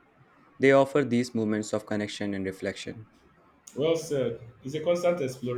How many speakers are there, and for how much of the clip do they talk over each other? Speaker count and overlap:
two, no overlap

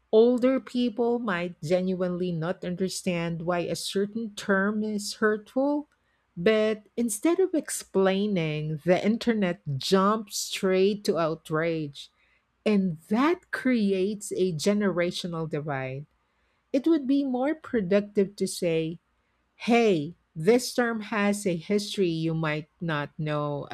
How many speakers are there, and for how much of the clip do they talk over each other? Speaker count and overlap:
one, no overlap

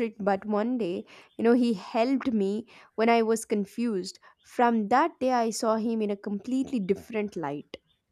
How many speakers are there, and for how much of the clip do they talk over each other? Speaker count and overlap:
one, no overlap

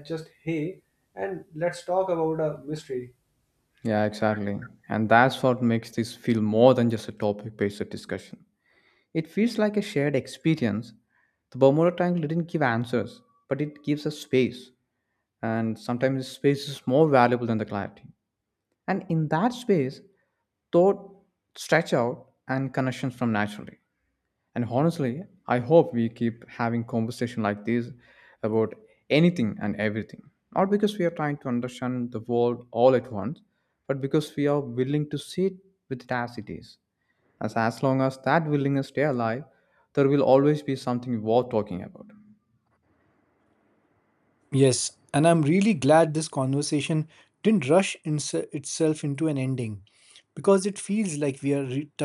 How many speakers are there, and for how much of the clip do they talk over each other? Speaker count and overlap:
three, no overlap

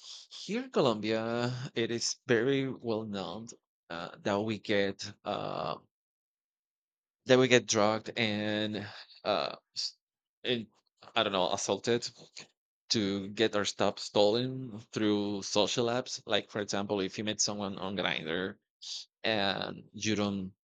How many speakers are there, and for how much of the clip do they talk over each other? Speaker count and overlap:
one, no overlap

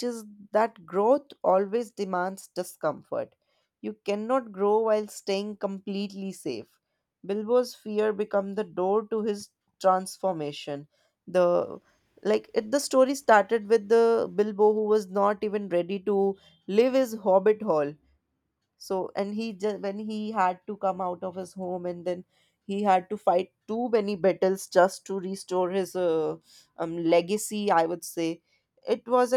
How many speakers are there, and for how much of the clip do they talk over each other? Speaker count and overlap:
one, no overlap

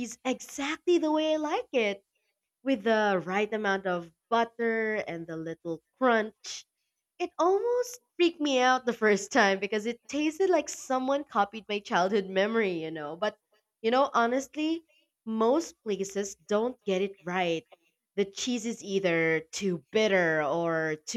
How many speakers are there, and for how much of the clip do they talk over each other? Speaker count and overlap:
one, no overlap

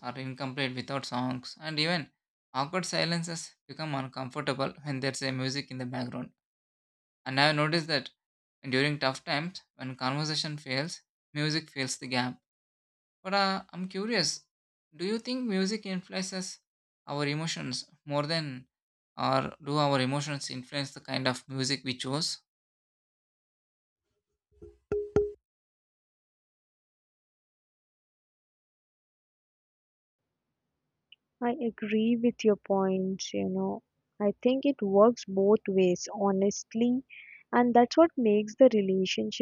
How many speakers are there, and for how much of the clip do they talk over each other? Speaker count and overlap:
two, no overlap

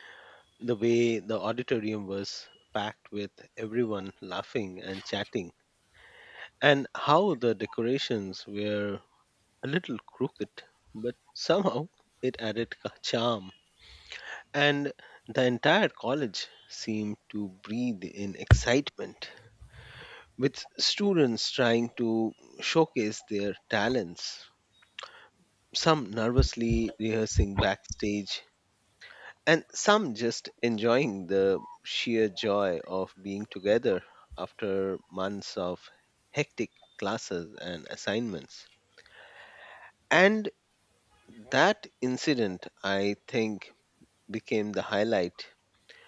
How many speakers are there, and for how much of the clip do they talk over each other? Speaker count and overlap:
one, no overlap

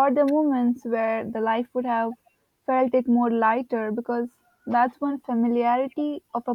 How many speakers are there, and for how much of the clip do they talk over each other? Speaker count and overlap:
one, no overlap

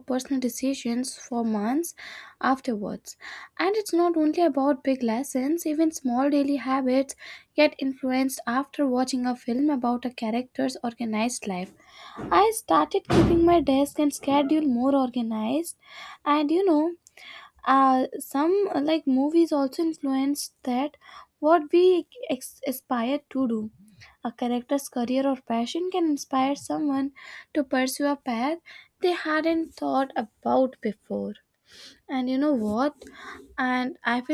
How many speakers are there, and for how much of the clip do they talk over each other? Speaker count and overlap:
one, no overlap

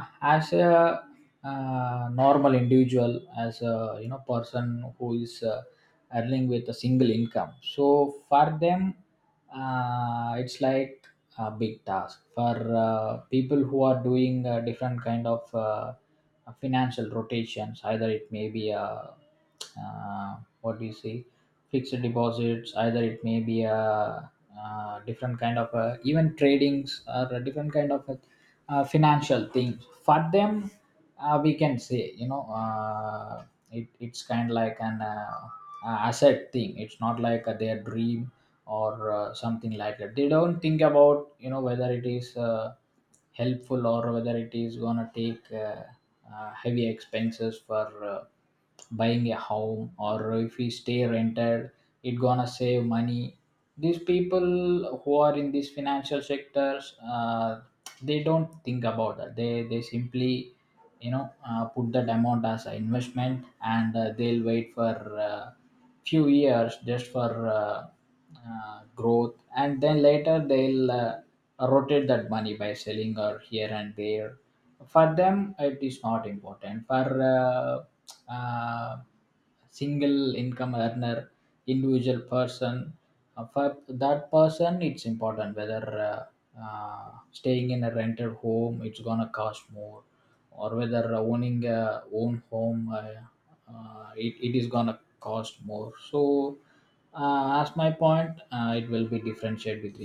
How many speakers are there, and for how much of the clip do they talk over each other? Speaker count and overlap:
one, no overlap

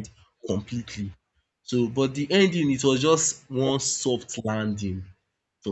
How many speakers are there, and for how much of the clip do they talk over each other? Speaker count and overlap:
one, no overlap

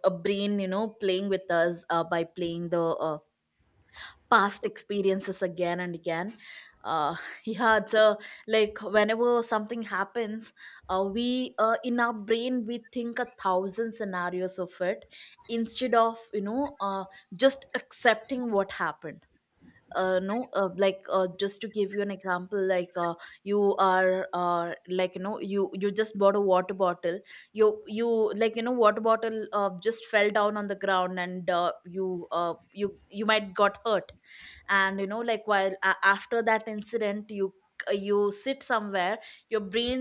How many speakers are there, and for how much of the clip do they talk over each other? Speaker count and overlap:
one, no overlap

